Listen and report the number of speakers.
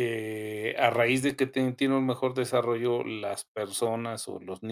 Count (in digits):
1